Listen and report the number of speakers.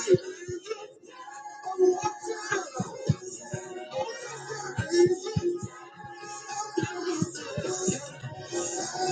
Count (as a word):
zero